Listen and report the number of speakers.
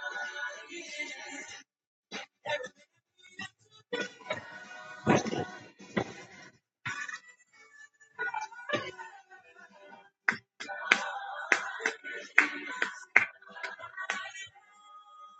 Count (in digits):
0